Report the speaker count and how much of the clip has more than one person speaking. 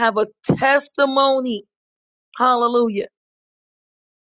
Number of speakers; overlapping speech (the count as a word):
one, no overlap